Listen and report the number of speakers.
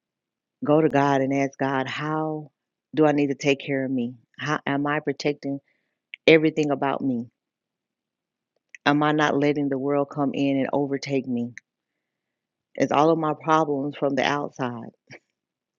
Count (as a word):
one